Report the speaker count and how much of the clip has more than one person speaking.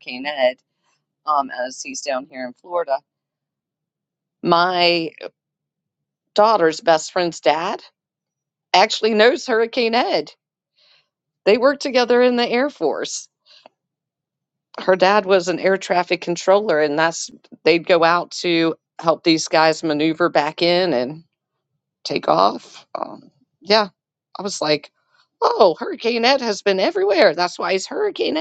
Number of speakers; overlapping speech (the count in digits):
1, no overlap